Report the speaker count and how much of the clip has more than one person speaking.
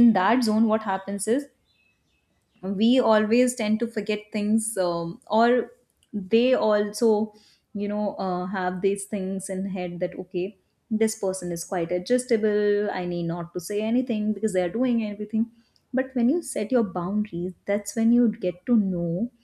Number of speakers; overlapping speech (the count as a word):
one, no overlap